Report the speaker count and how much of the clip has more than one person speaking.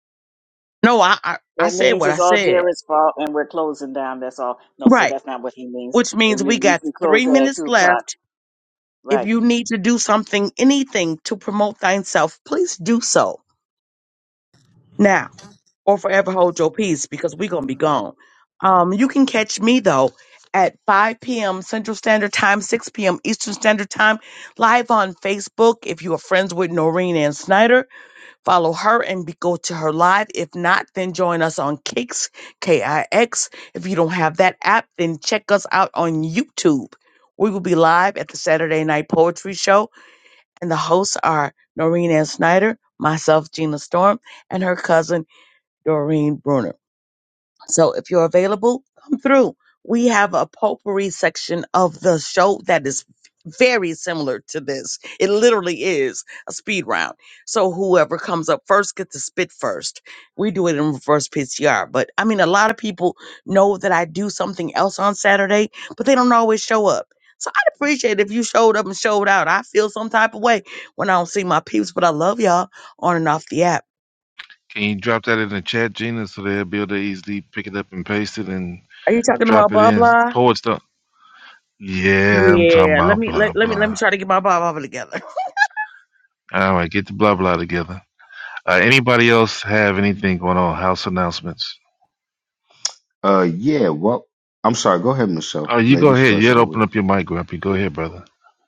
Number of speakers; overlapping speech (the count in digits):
4, about 7%